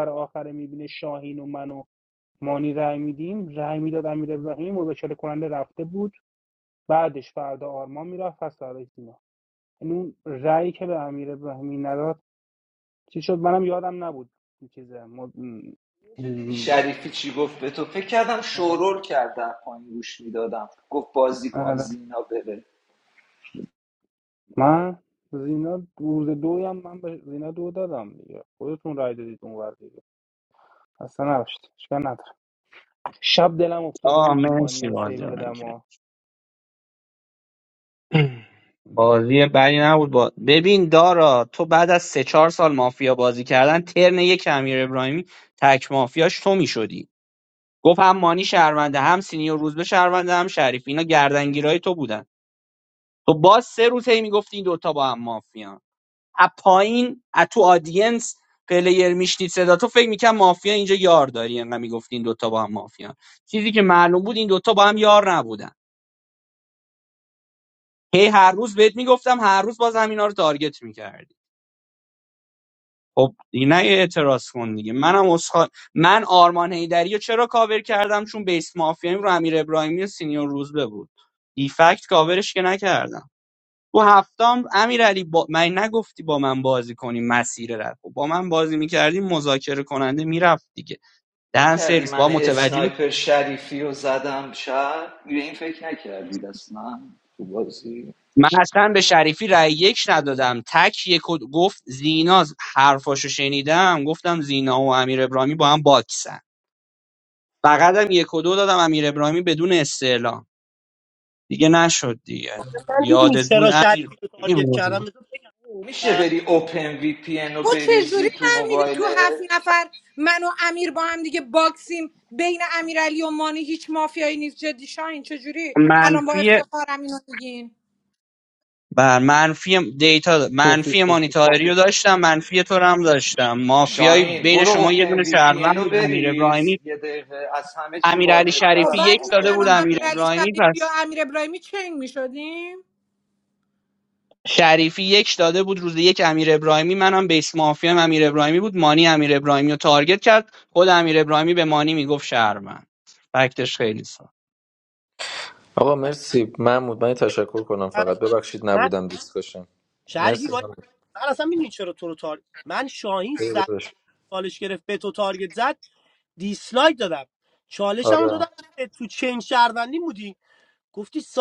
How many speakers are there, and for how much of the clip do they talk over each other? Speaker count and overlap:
6, about 9%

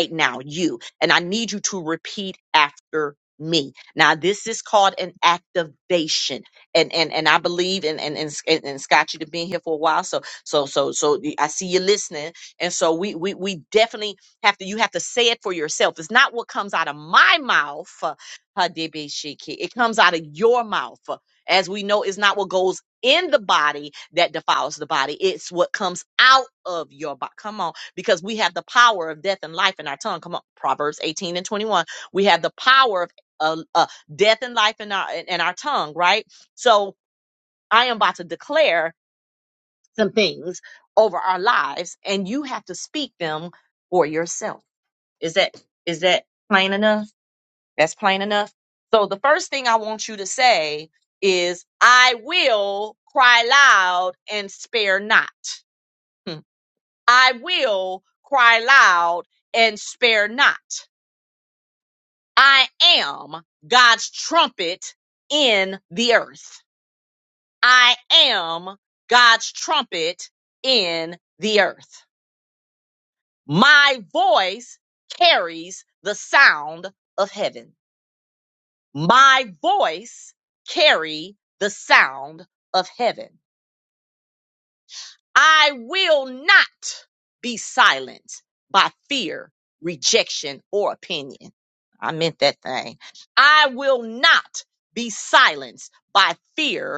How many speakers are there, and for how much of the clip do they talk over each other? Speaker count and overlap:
1, no overlap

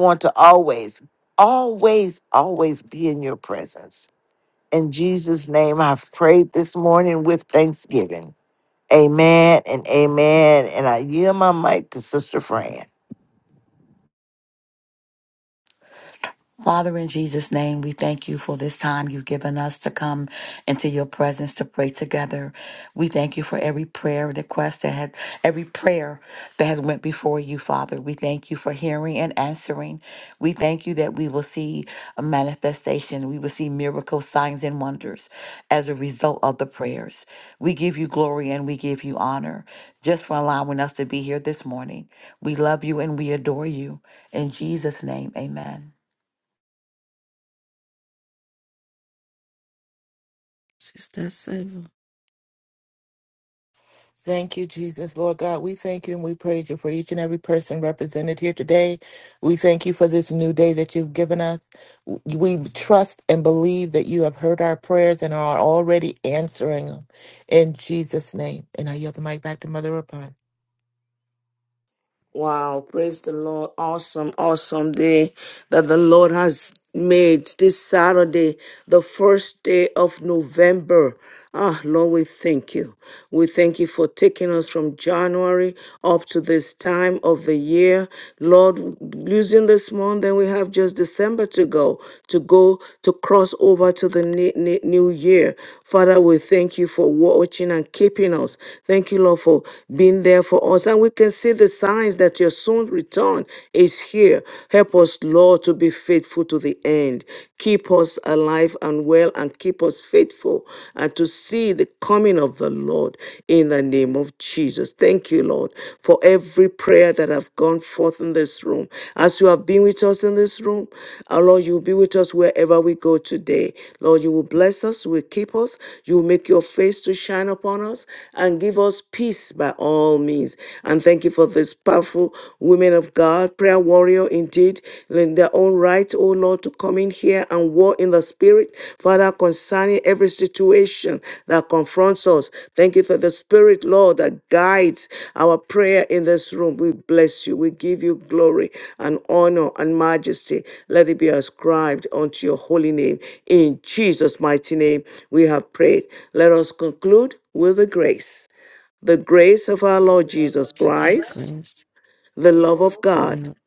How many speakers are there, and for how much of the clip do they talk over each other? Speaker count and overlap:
5, under 1%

